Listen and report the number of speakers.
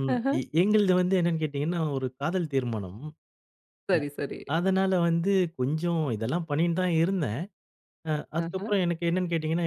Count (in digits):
2